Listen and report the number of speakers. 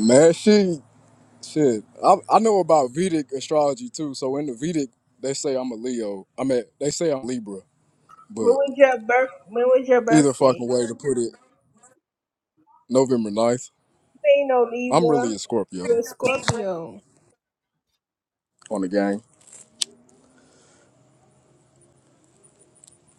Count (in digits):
2